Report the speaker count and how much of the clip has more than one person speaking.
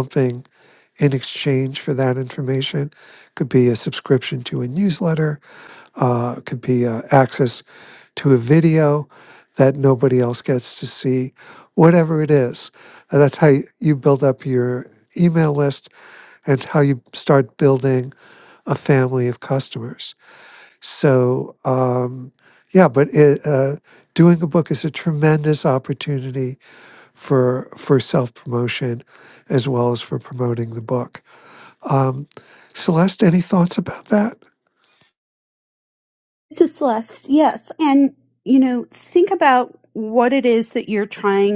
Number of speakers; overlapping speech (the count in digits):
2, no overlap